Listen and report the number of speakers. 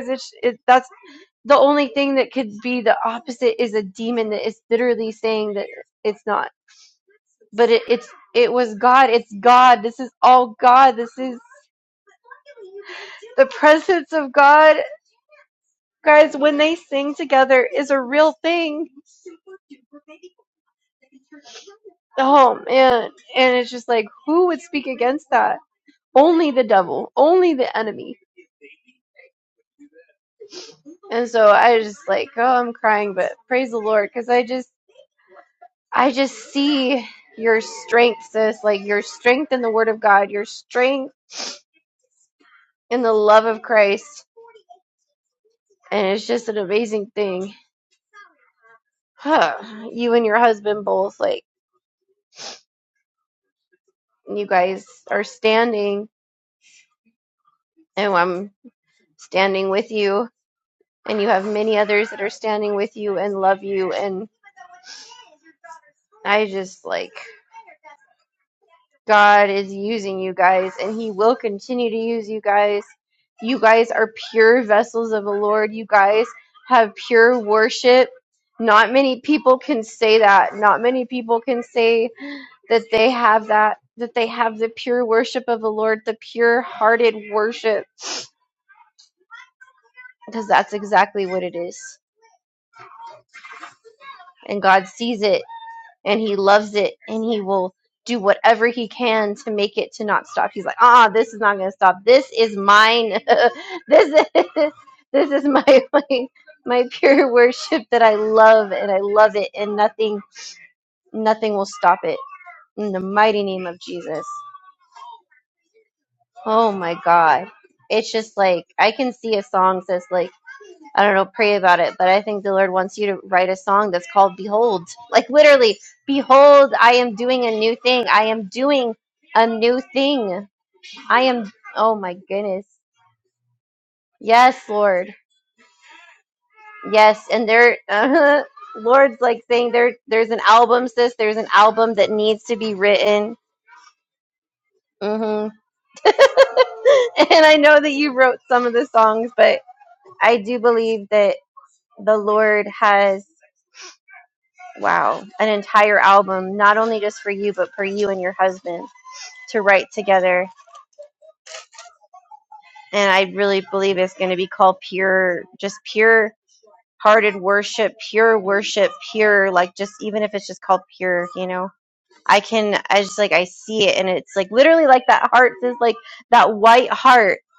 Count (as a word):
one